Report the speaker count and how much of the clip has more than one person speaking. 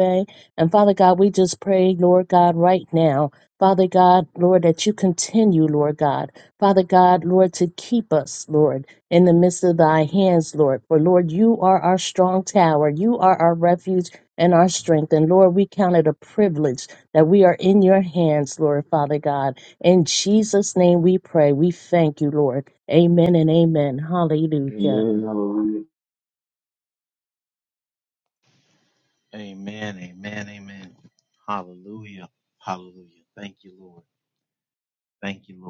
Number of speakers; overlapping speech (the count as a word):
three, about 1%